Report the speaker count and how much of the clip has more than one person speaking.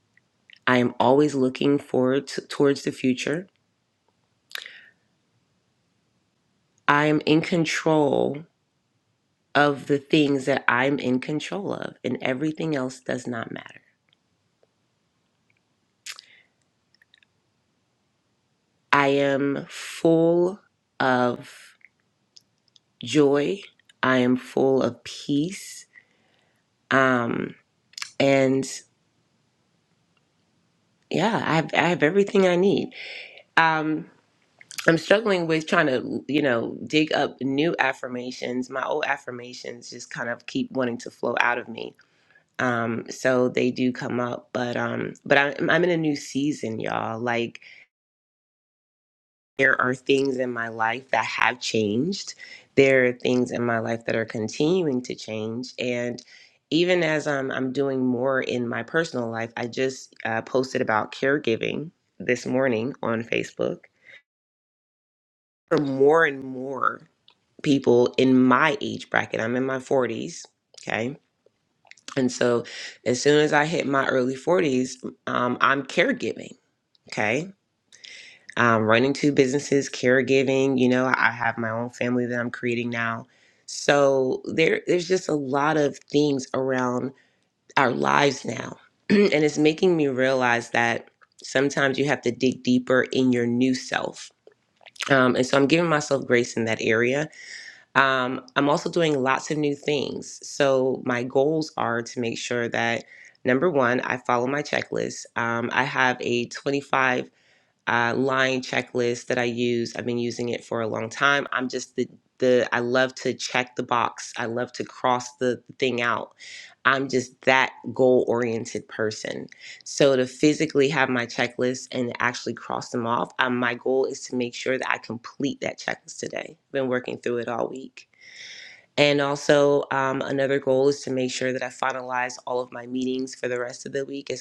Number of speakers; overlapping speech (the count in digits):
1, no overlap